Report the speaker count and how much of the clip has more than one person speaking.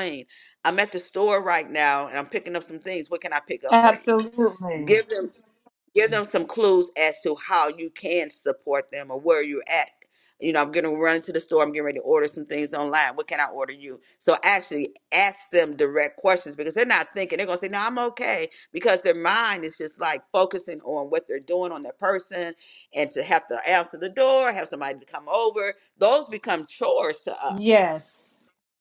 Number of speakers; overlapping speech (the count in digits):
2, about 1%